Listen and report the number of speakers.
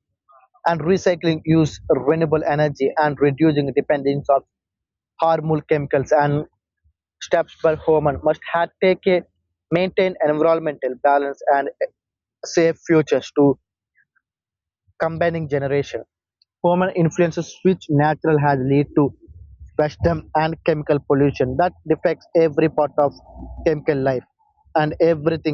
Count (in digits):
1